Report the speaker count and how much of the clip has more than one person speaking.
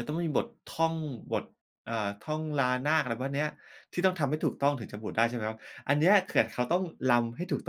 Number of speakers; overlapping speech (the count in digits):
1, no overlap